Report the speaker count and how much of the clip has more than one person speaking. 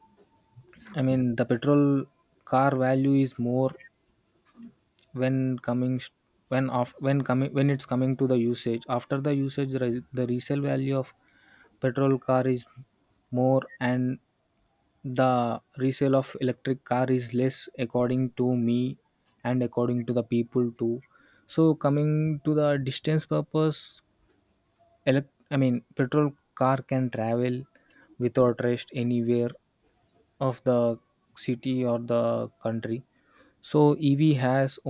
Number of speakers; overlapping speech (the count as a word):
one, no overlap